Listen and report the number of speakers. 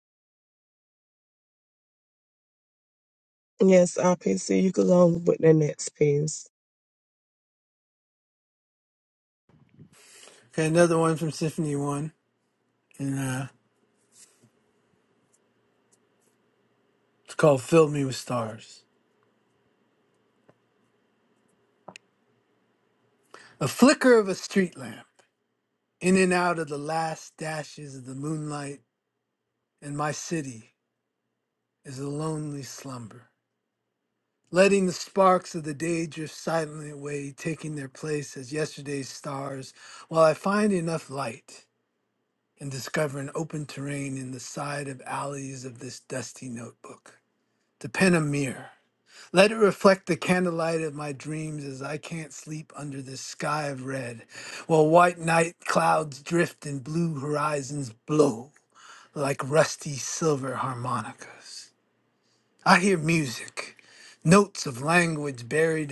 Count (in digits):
2